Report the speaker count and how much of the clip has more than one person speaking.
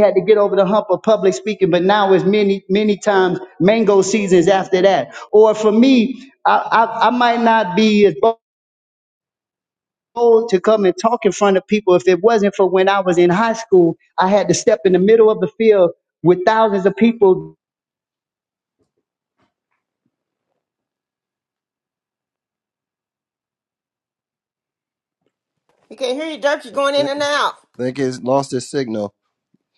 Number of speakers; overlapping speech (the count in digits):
3, under 1%